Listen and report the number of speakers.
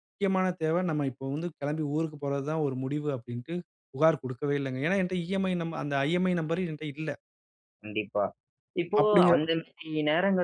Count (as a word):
two